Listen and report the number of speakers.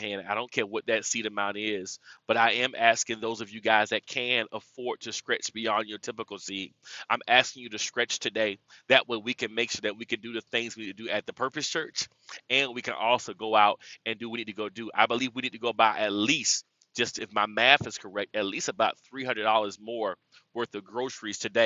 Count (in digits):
1